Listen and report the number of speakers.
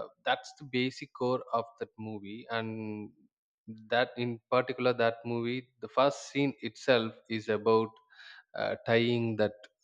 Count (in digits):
1